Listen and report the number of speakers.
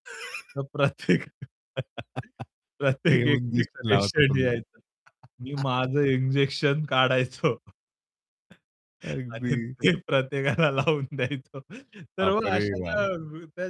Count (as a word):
two